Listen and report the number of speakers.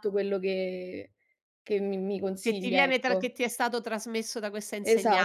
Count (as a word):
two